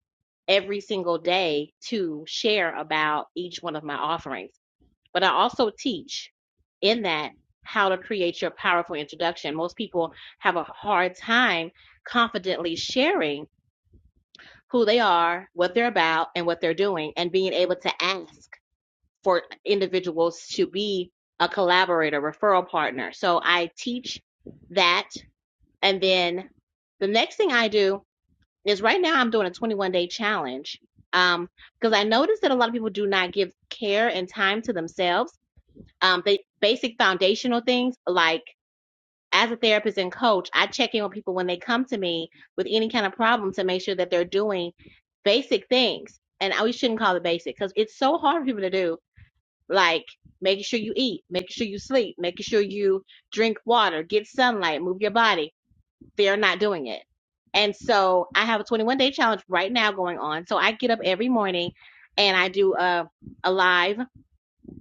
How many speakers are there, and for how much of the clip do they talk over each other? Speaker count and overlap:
1, no overlap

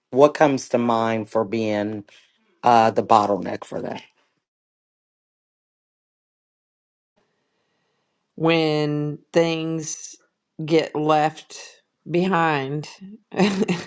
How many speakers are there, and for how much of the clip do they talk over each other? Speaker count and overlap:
2, no overlap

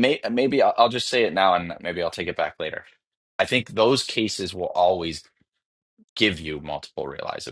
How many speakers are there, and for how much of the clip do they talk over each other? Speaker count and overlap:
1, no overlap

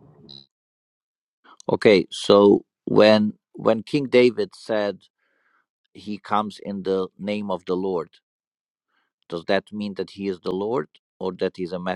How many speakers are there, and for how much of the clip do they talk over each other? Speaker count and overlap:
1, no overlap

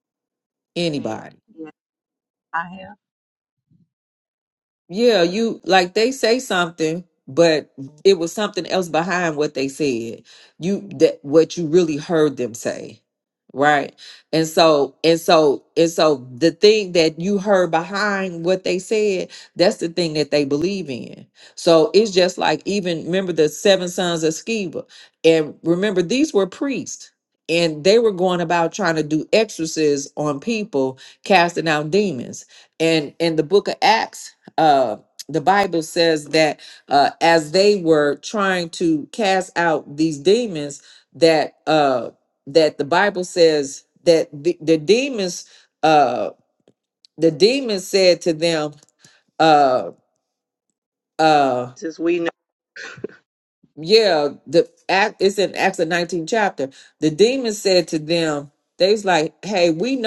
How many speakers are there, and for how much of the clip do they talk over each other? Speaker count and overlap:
2, under 1%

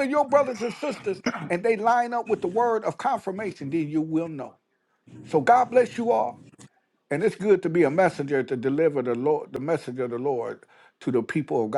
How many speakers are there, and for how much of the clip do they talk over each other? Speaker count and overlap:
1, no overlap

